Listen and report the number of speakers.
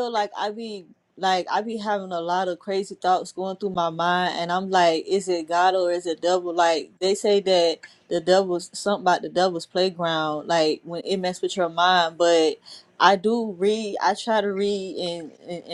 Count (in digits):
1